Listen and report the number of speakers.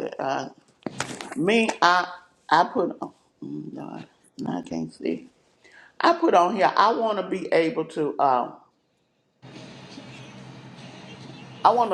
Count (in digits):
1